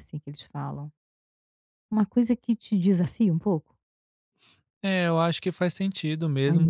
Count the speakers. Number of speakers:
2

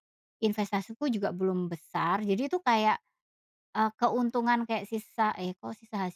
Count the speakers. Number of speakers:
1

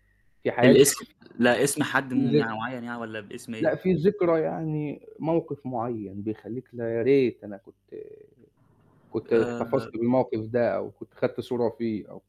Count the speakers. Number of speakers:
2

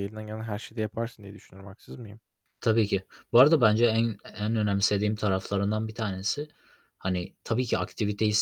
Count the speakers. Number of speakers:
2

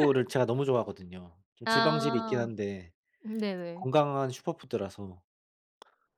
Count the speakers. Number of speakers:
2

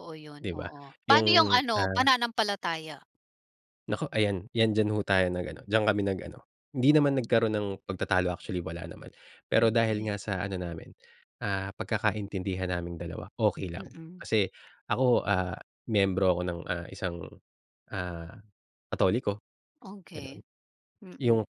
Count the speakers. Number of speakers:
2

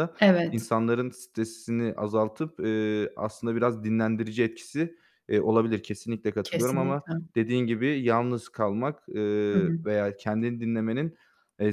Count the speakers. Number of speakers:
2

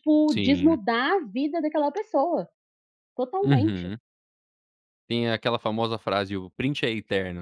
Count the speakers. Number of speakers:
2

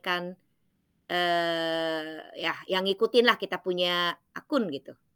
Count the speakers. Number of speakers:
1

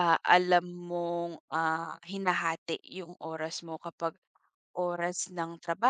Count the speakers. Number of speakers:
1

